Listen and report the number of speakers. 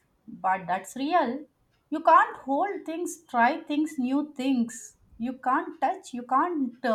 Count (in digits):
1